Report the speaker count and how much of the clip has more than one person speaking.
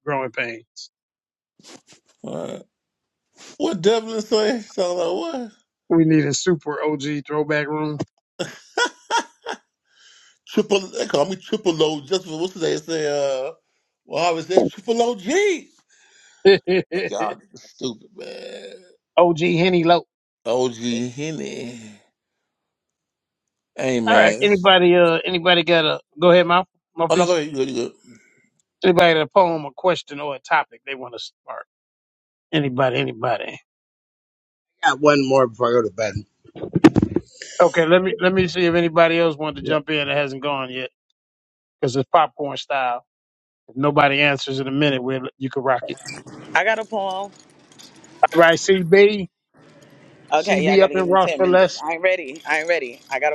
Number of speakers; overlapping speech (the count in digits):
4, about 4%